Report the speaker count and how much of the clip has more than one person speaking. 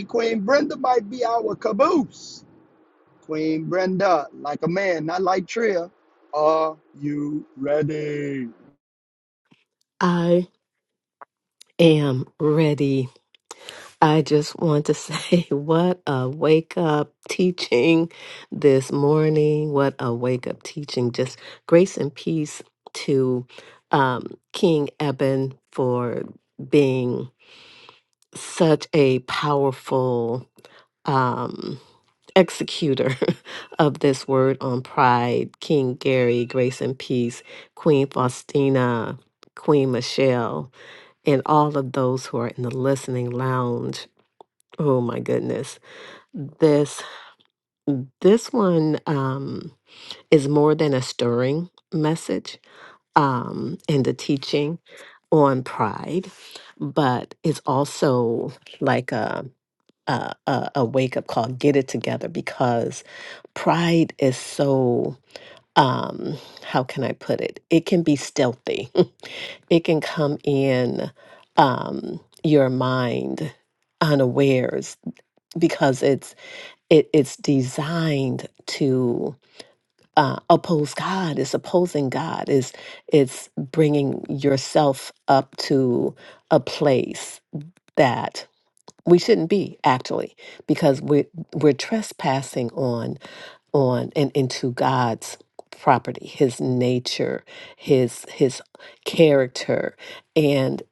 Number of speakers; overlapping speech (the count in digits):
2, no overlap